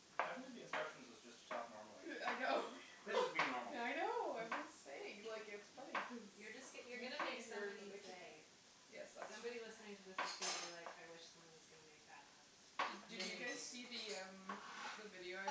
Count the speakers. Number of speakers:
3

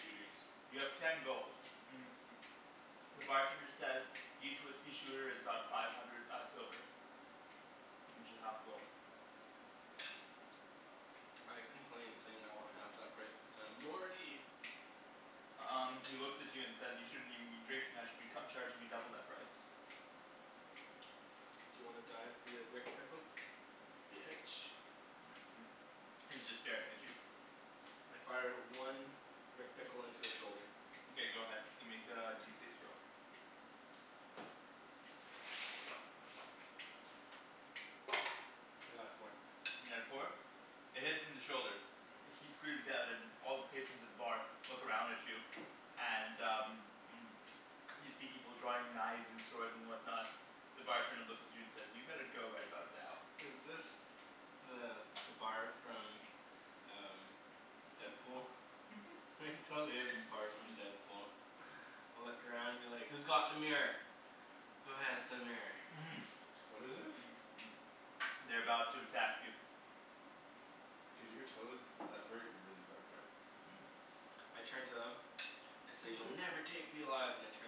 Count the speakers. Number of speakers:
3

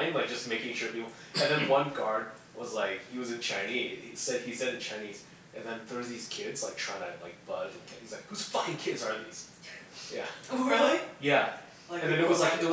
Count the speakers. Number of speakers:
2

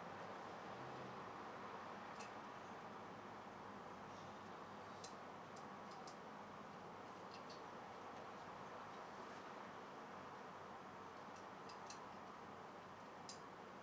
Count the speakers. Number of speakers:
0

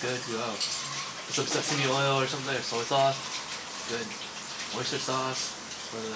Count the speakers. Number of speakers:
1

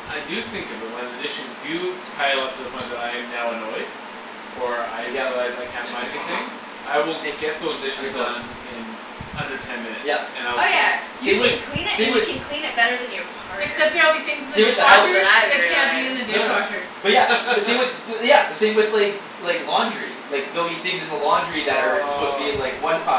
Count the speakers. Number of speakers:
4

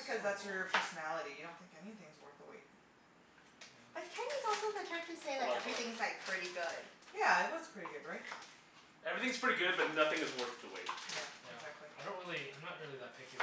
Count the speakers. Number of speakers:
4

